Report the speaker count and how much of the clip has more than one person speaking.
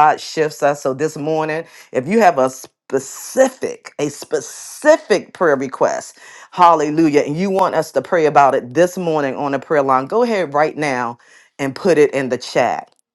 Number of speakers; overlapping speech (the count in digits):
1, no overlap